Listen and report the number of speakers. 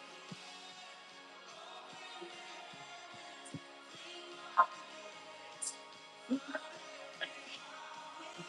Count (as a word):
zero